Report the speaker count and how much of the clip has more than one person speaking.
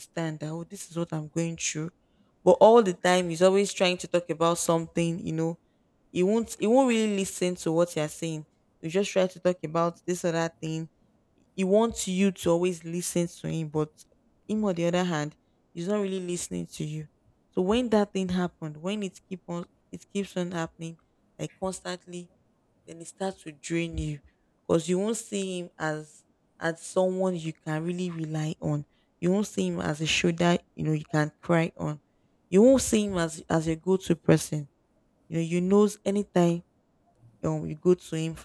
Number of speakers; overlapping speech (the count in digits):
1, no overlap